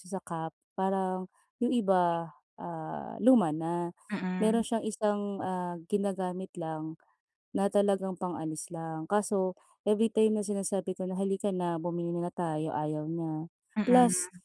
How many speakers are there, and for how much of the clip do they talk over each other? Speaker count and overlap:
two, about 3%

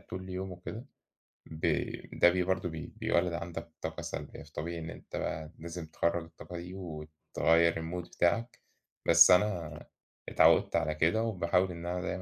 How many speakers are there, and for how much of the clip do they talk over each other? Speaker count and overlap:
one, no overlap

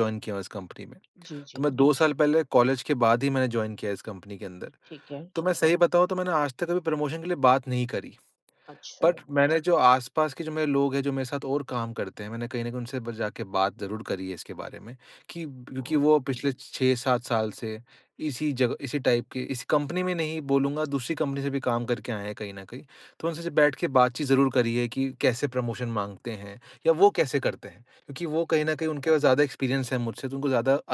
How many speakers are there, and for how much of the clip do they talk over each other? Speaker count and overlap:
two, about 2%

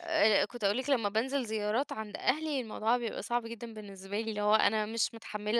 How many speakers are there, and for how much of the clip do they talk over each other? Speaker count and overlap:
one, no overlap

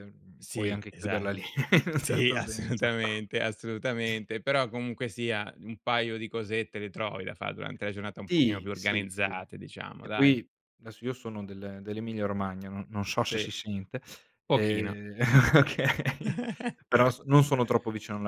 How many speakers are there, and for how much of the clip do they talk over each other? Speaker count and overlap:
two, about 21%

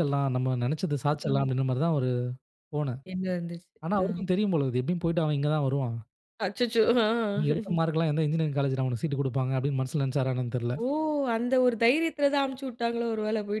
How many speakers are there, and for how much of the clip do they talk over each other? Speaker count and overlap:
two, about 3%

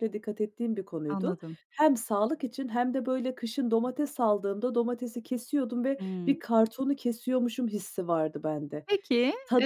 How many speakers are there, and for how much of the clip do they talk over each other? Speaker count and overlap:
two, about 9%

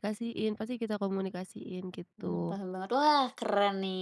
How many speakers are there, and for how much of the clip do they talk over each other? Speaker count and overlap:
two, about 8%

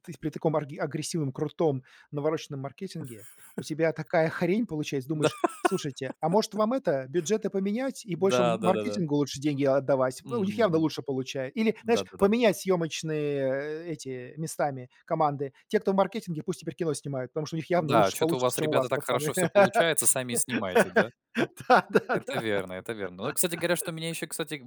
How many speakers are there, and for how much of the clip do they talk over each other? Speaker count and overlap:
two, about 16%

